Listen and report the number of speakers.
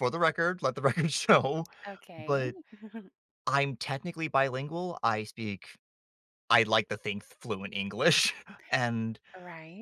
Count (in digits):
2